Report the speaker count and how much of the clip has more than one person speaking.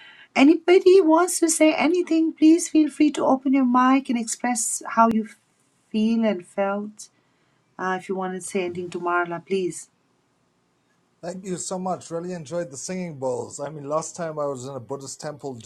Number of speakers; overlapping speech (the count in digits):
2, no overlap